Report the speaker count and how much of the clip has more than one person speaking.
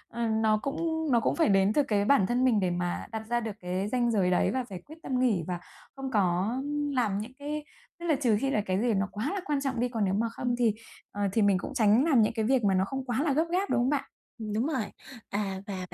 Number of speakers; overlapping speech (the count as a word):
two, about 1%